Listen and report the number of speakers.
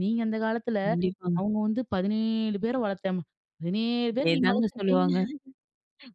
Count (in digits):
2